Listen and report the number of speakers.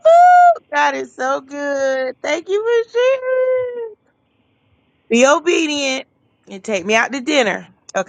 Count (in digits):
1